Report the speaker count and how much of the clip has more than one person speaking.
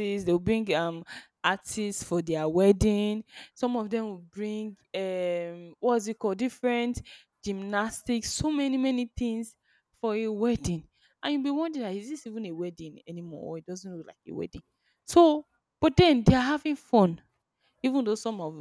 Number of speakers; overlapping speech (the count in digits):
1, no overlap